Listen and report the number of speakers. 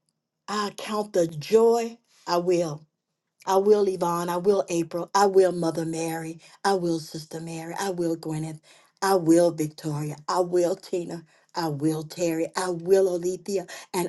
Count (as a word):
one